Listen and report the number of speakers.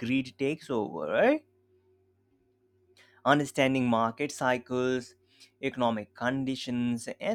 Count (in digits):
1